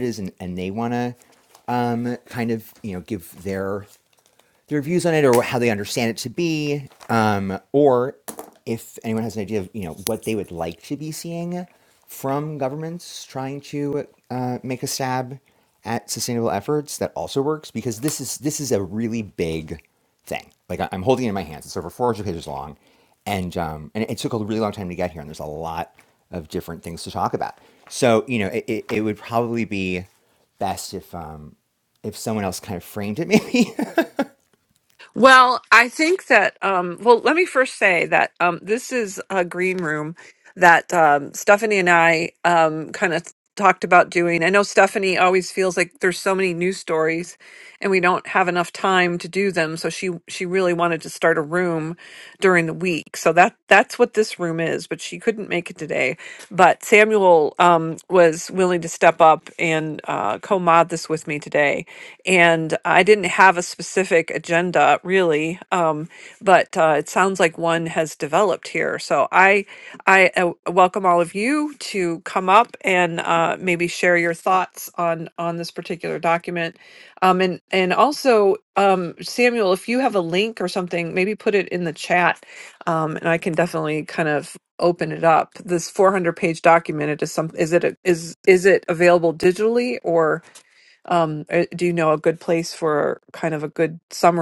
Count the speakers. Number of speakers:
2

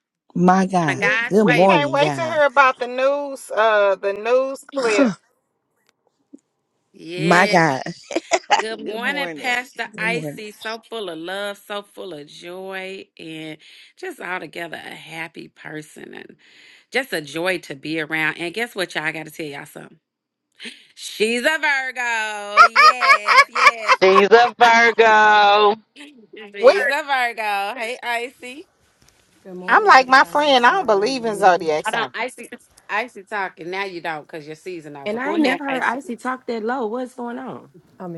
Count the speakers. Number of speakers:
6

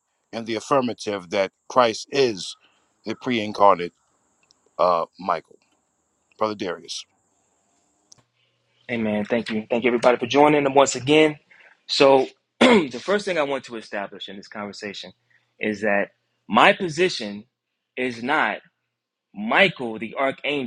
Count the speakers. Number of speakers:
2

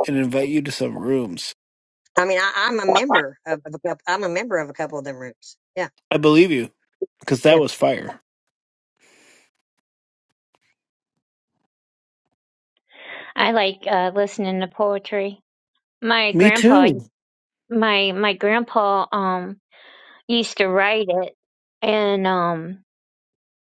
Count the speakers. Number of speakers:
3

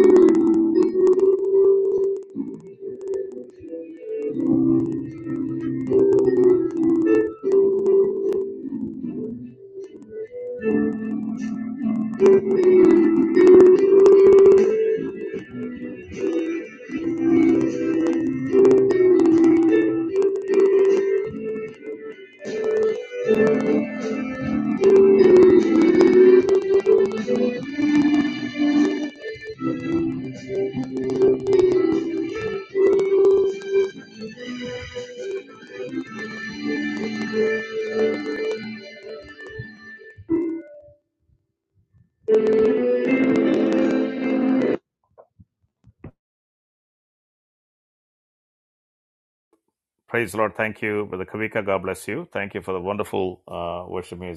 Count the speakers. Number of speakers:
1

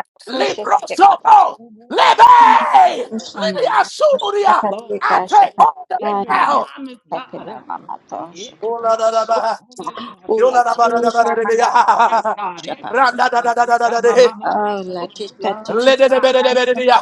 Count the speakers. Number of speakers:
3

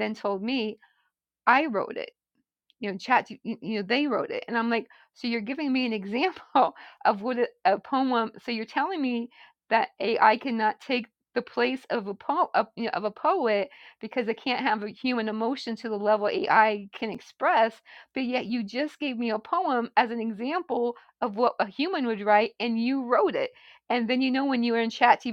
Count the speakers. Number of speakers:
1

